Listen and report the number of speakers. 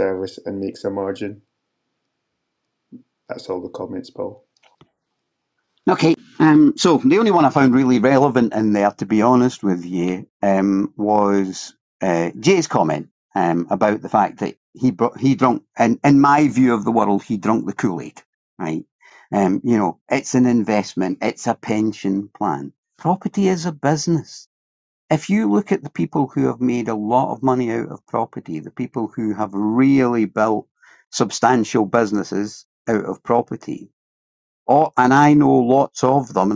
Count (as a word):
two